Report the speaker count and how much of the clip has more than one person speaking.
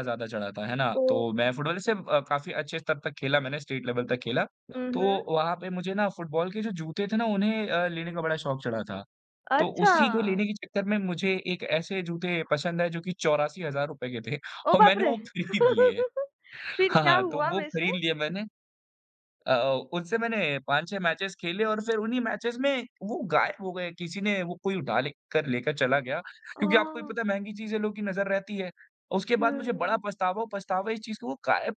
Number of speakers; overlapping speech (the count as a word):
two, about 12%